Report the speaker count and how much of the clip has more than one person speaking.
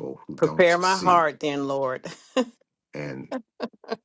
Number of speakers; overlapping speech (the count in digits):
2, about 21%